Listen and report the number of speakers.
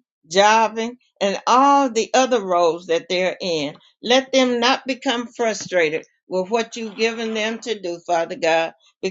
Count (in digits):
1